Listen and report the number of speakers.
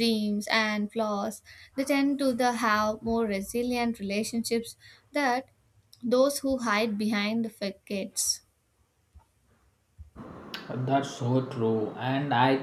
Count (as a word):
two